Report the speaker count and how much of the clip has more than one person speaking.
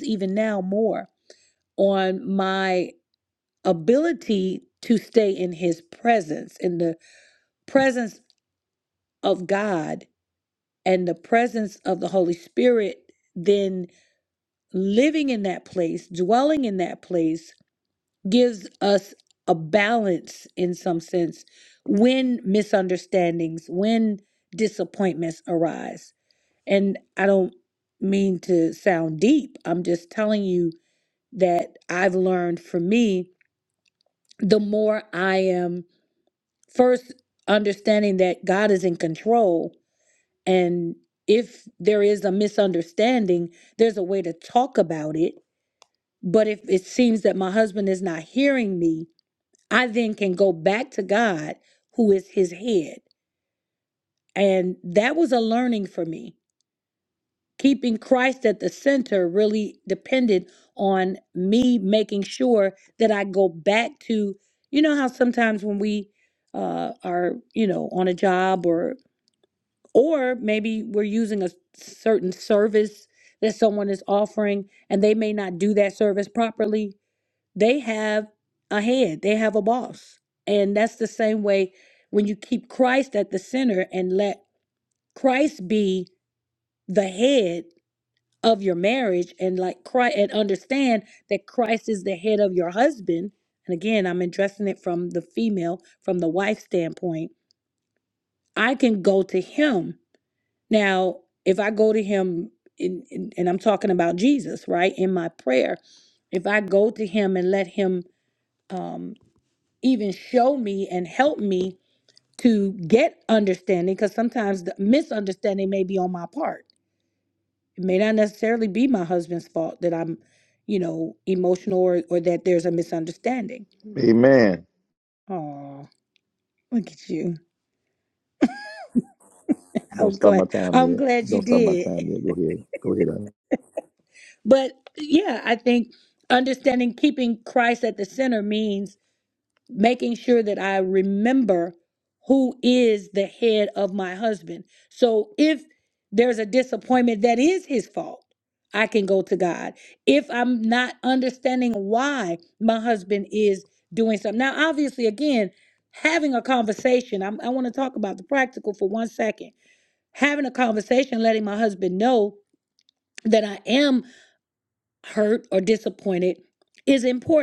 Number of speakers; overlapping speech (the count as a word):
two, about 1%